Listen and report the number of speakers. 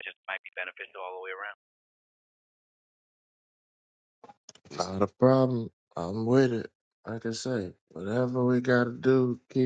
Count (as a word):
two